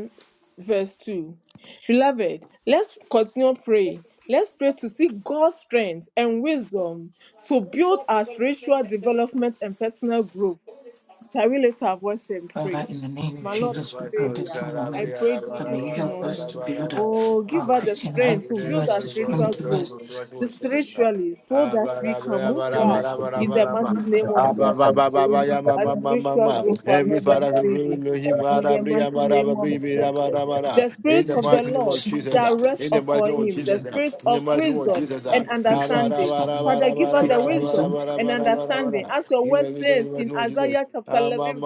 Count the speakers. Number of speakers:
3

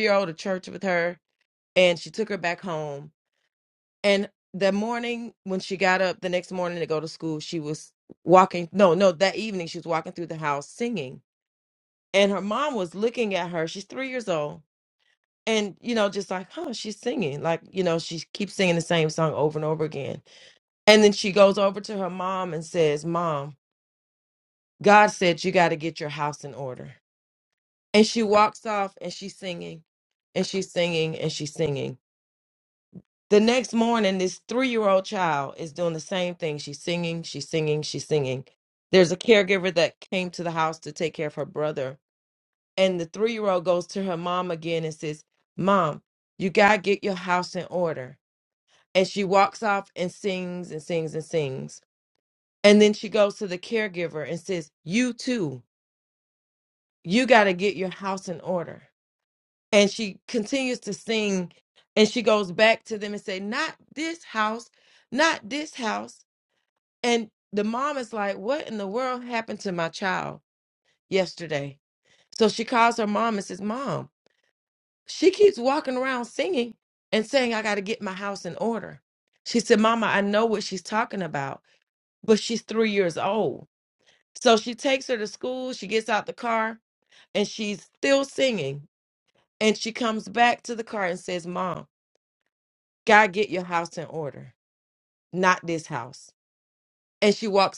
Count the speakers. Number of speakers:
1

